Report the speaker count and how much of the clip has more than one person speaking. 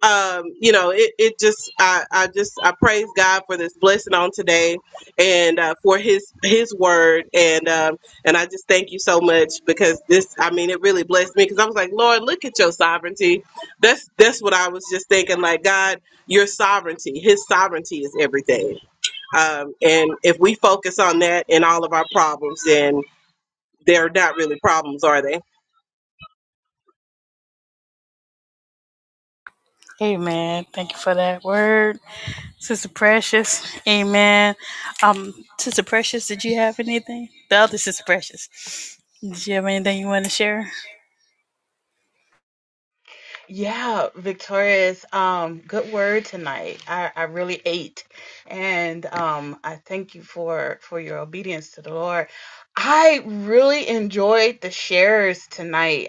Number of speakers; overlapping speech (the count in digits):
3, no overlap